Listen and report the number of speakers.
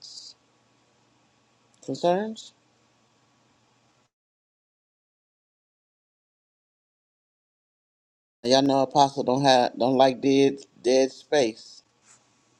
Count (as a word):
one